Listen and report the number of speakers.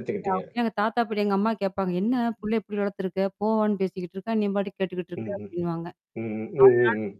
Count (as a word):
two